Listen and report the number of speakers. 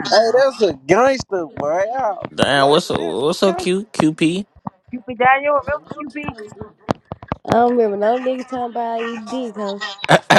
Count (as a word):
four